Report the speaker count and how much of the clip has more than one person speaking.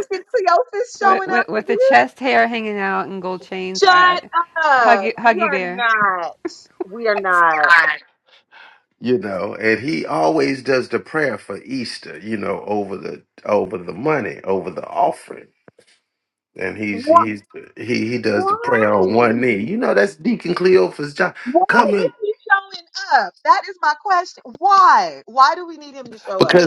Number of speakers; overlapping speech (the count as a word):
three, about 16%